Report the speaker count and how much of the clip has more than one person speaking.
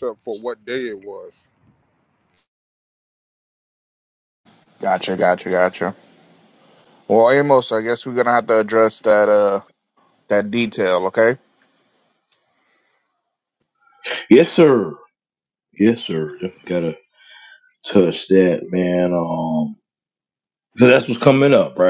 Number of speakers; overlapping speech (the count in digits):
3, no overlap